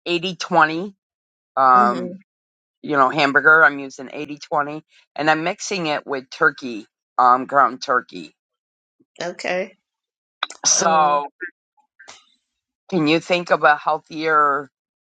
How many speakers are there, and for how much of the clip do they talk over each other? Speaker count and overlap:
2, about 5%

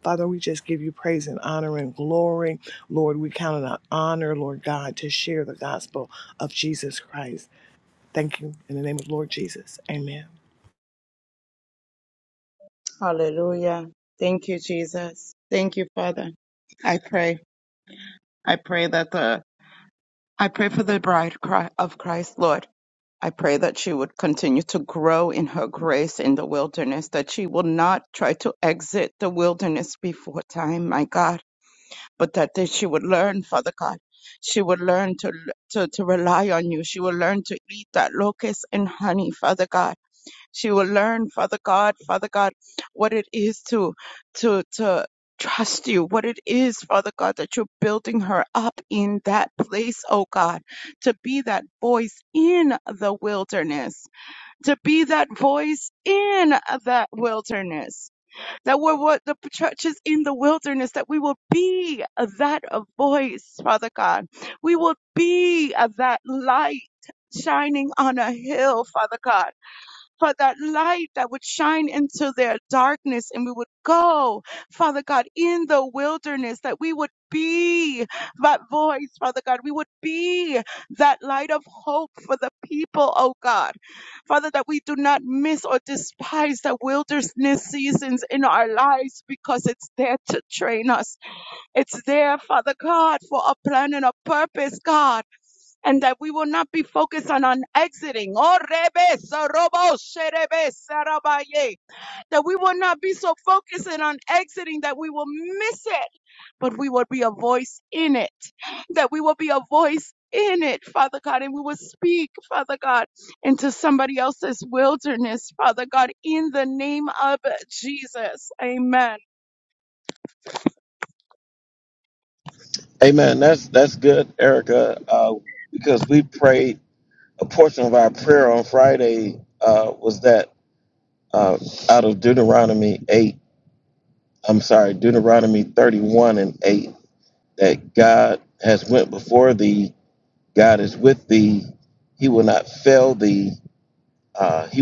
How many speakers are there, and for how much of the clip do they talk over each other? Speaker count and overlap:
3, no overlap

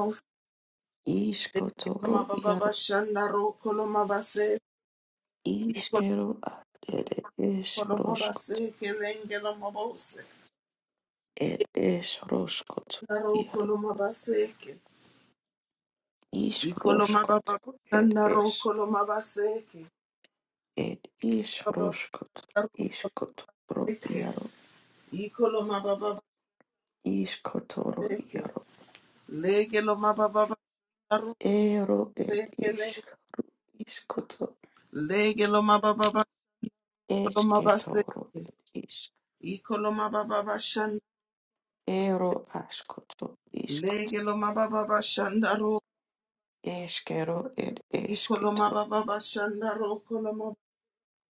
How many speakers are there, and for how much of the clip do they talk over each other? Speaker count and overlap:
2, about 17%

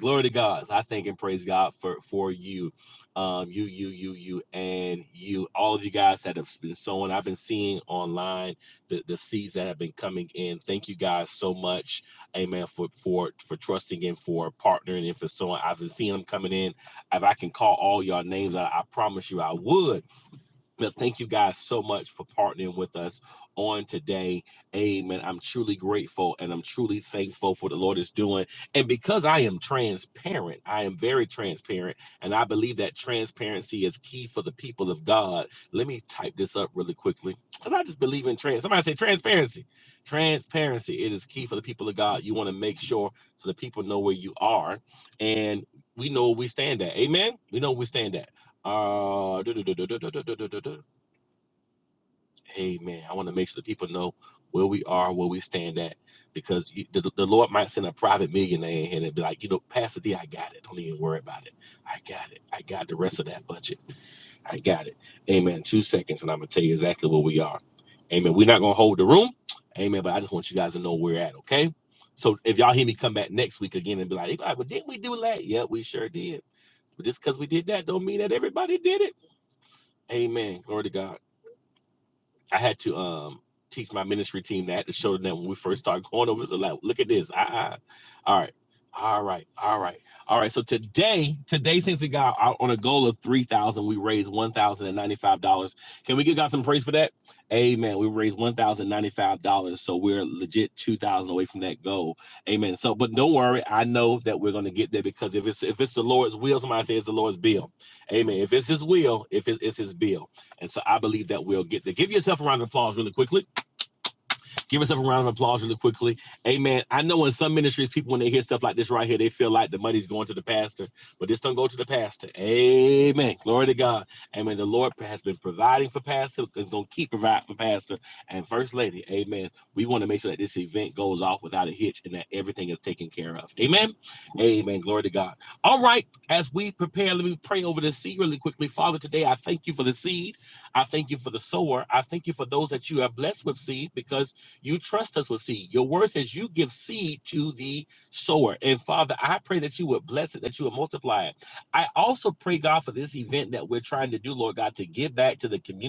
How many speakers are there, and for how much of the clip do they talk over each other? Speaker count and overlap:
1, no overlap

